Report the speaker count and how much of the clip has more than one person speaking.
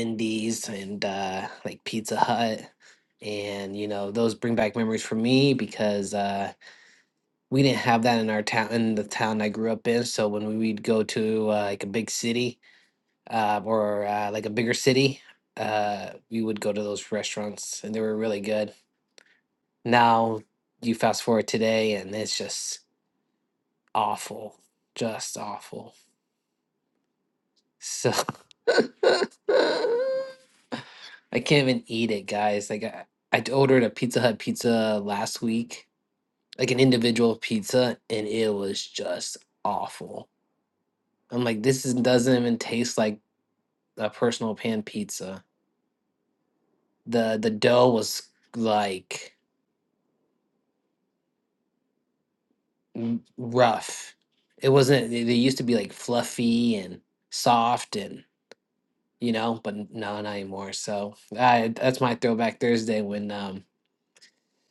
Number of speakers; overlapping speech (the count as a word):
one, no overlap